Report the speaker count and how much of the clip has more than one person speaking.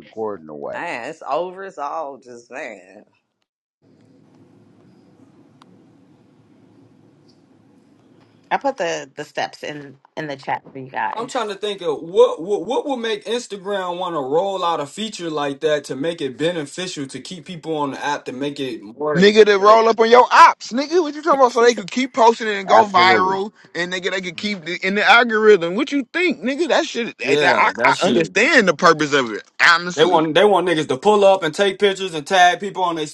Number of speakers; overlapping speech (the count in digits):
5, about 9%